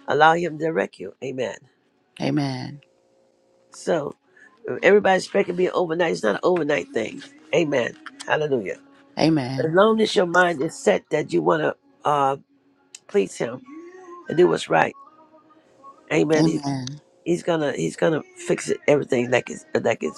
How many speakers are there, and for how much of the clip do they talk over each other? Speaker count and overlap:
2, about 2%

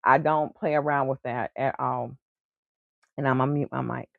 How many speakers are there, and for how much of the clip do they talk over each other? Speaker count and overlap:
1, no overlap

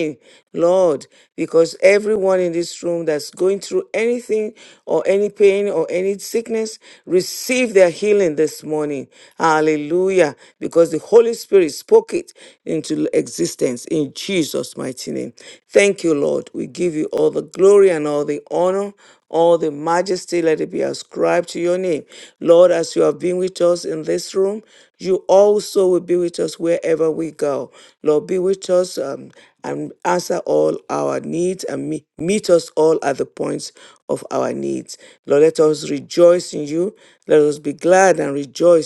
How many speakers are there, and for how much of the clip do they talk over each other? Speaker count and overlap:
1, no overlap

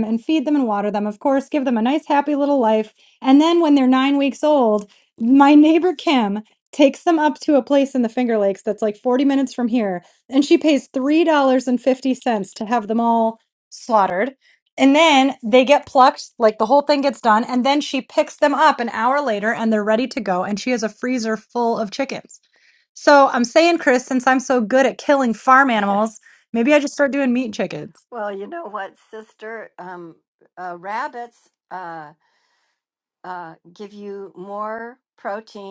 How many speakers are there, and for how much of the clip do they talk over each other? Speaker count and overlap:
2, no overlap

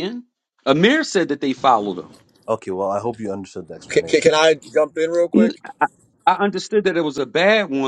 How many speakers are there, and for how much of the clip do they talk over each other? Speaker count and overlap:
3, about 6%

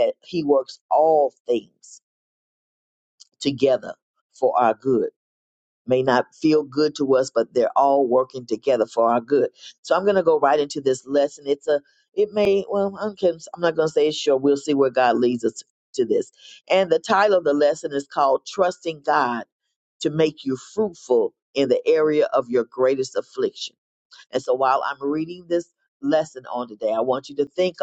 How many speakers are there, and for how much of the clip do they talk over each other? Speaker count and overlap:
1, no overlap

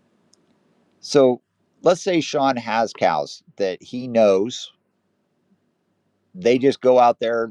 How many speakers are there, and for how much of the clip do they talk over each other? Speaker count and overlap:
1, no overlap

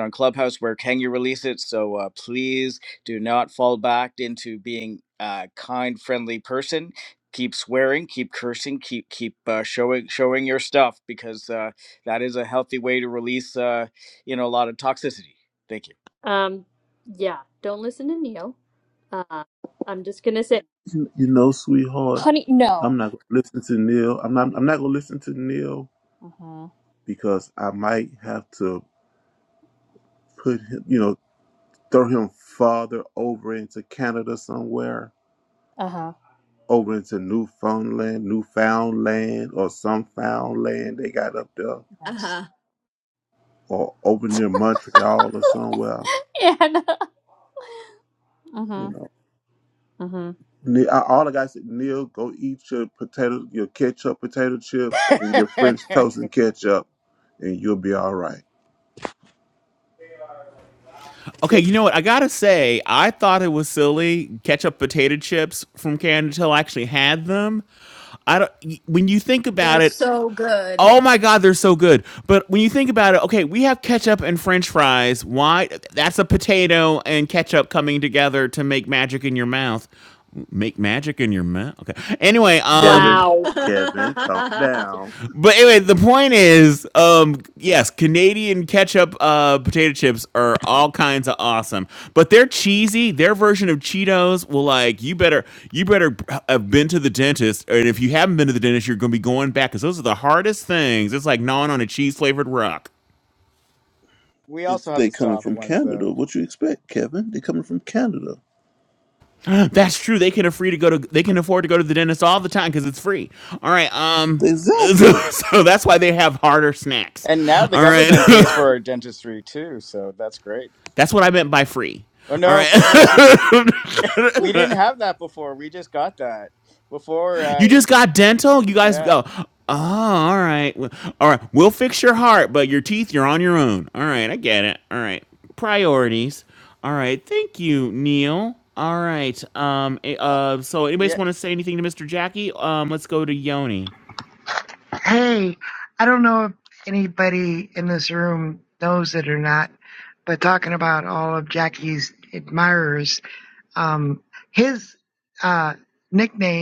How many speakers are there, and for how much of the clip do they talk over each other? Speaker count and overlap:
6, about 3%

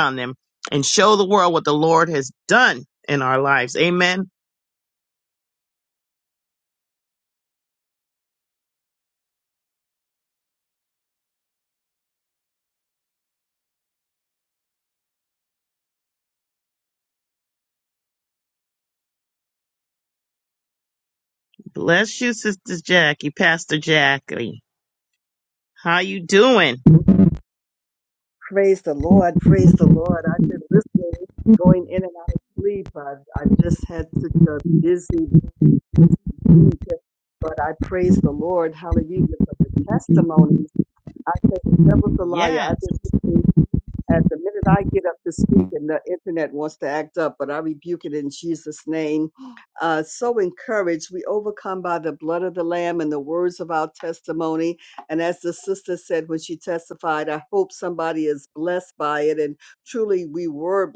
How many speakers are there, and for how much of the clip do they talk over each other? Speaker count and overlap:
2, about 1%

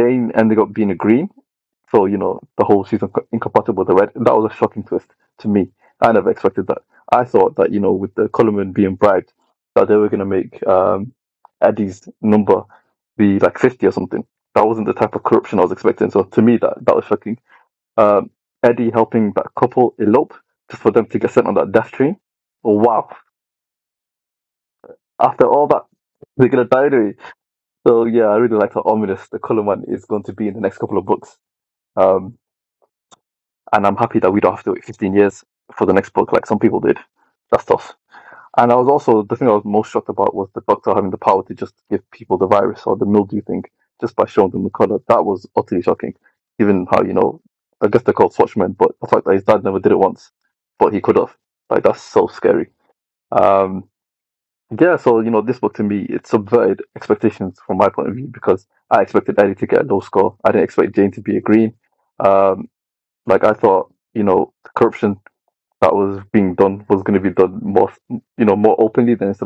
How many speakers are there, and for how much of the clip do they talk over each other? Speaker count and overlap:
1, no overlap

